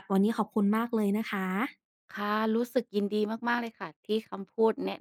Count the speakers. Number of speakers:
2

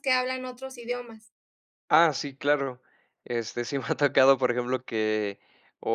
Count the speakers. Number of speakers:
2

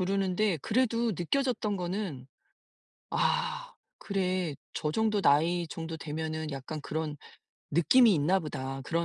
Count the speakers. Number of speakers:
1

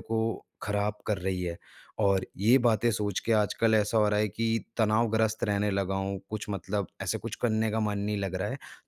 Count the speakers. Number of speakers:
1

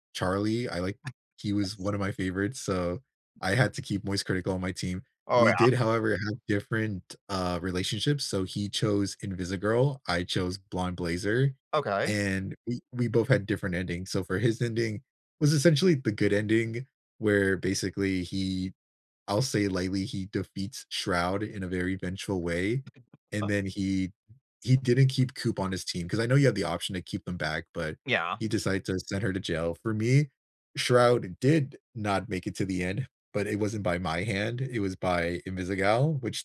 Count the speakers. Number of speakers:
2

